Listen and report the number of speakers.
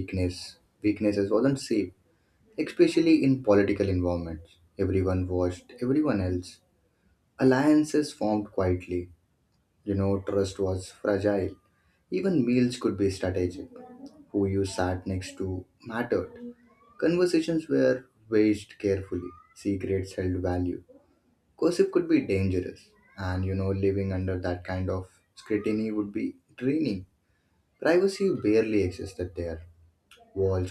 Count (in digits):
1